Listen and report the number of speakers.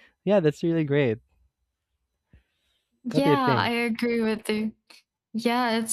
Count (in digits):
2